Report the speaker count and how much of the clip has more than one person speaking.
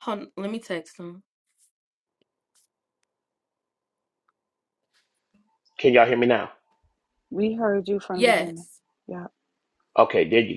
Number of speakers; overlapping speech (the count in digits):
3, about 3%